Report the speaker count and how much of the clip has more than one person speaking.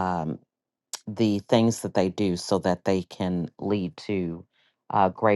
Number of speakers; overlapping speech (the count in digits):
1, no overlap